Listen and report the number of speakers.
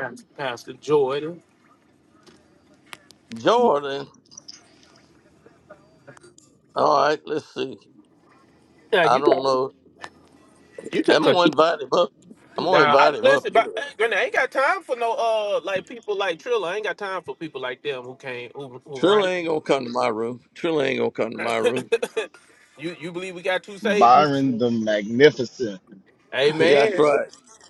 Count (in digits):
3